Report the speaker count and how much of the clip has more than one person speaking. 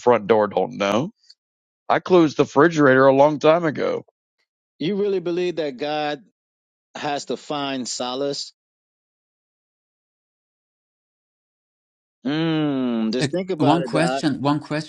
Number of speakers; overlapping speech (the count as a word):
three, about 7%